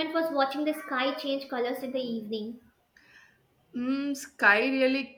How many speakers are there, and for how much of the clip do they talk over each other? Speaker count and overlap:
two, no overlap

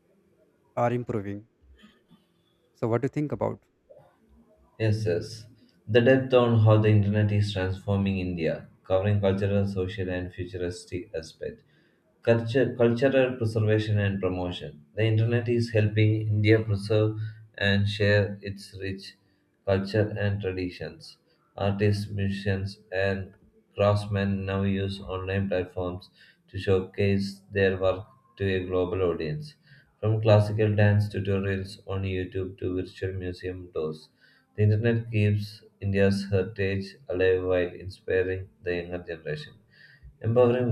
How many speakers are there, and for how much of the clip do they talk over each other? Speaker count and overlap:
two, no overlap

